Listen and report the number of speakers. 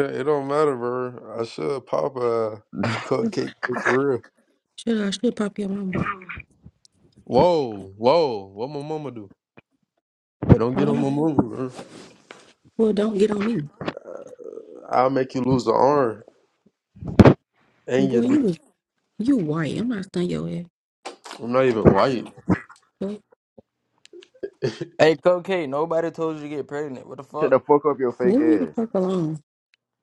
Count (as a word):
four